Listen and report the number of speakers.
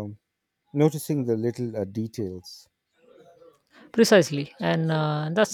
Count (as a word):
two